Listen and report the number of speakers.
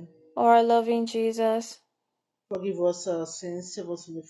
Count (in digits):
2